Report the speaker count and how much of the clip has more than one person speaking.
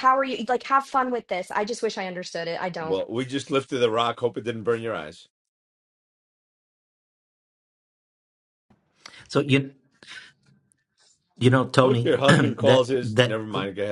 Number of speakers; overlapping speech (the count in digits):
3, about 12%